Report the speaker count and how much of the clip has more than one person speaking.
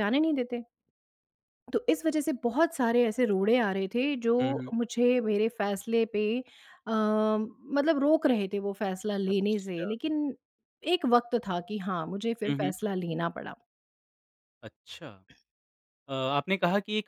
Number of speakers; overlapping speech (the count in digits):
2, about 5%